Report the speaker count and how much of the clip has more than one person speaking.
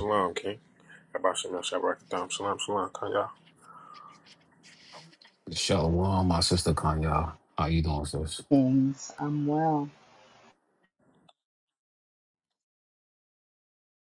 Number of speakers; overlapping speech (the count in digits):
3, no overlap